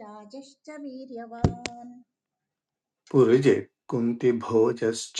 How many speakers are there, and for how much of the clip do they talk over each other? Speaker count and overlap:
two, no overlap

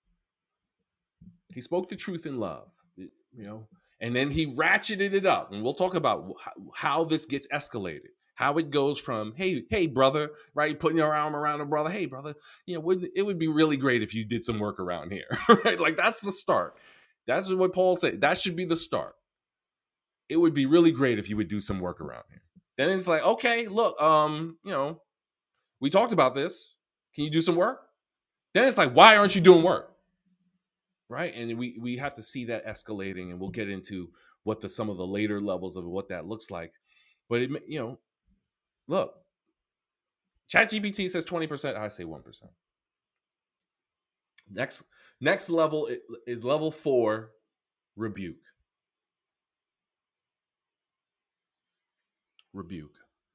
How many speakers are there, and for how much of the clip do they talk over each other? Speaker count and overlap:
one, no overlap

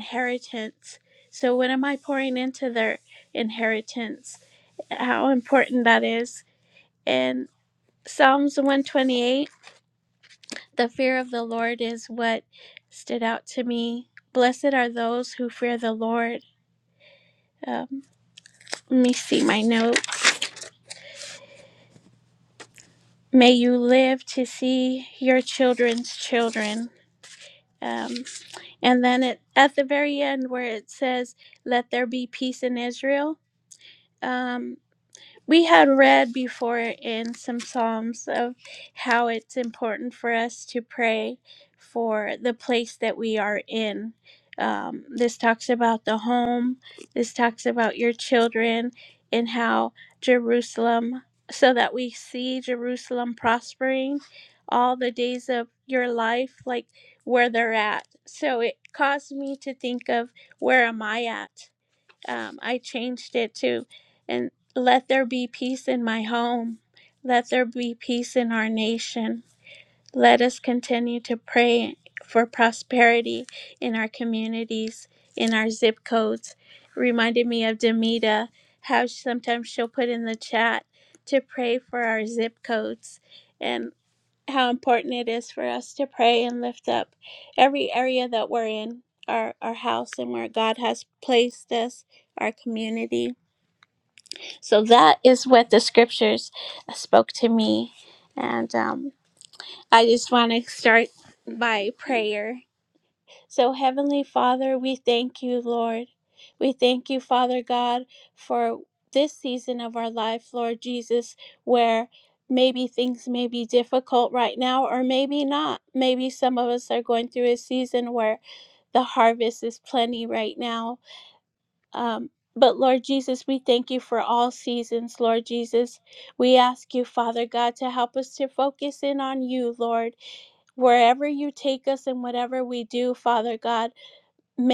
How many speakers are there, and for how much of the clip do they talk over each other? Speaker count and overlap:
one, no overlap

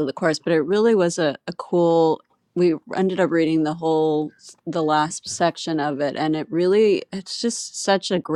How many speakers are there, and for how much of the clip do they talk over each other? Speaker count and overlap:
one, no overlap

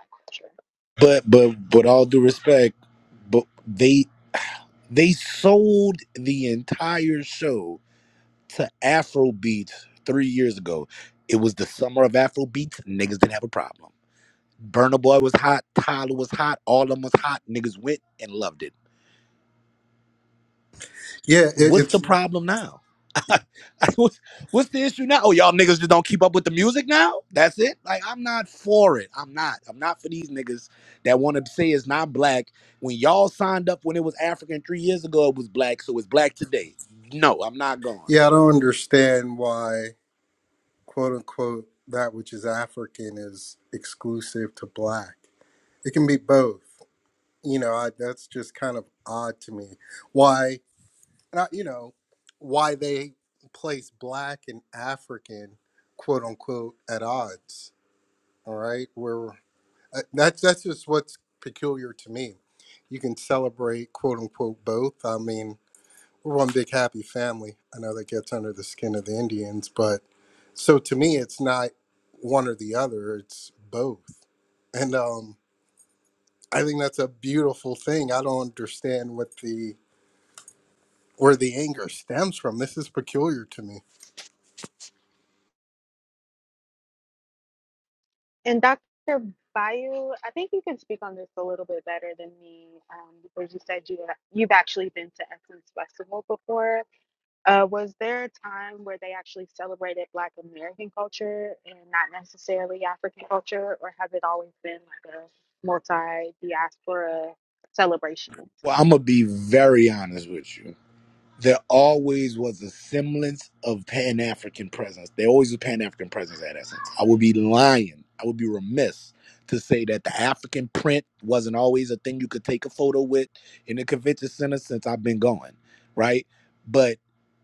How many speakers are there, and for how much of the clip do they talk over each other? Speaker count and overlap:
three, under 1%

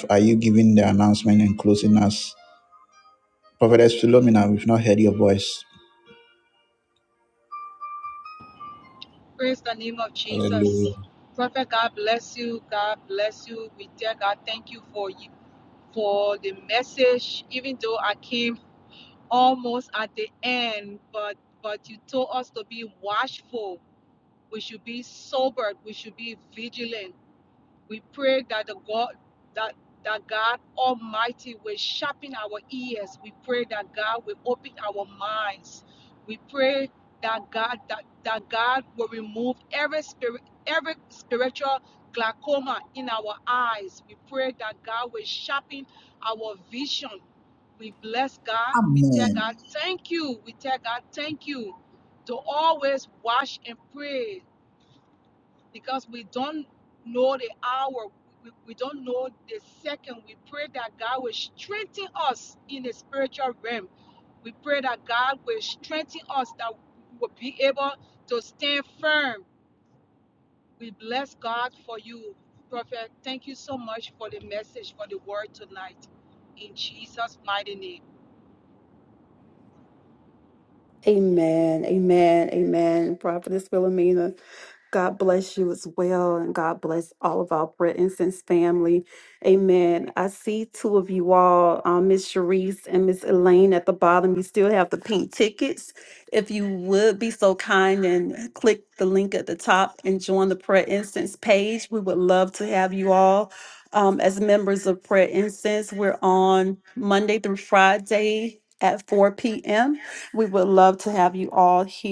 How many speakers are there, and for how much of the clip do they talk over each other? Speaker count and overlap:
three, no overlap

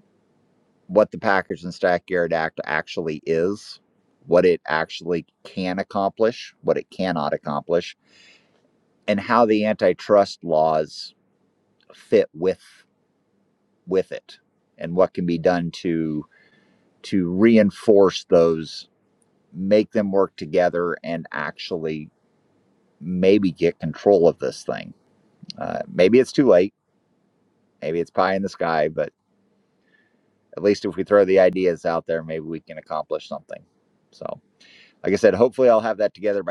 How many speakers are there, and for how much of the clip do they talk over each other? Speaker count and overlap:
one, no overlap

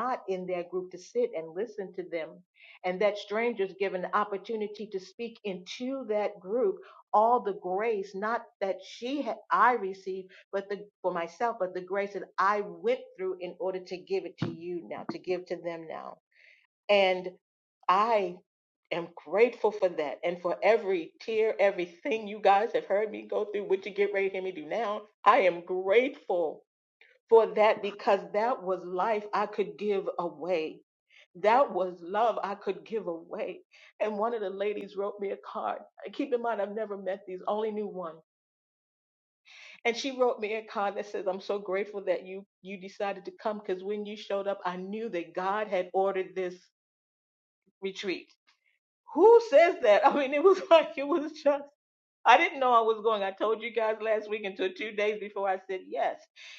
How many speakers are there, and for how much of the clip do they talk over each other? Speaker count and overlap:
one, no overlap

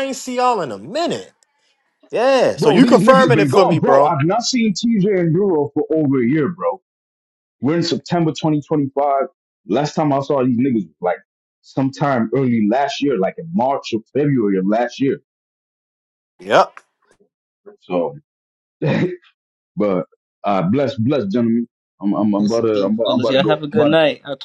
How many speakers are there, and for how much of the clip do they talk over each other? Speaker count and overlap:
three, about 13%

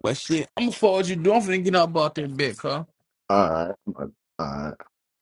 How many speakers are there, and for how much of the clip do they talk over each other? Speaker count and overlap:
two, no overlap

